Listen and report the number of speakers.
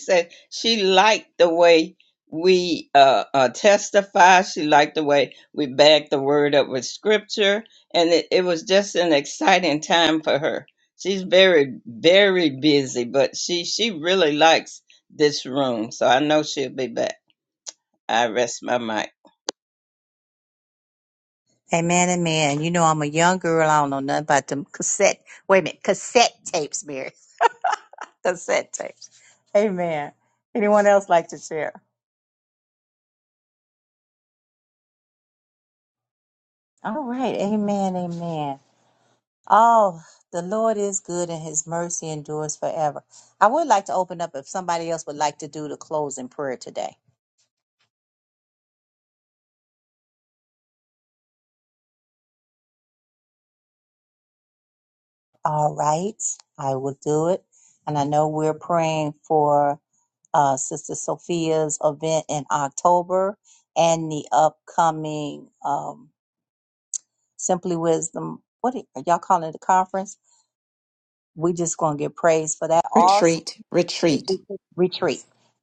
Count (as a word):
three